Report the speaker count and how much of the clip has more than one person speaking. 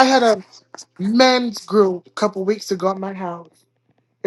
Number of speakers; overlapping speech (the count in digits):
1, no overlap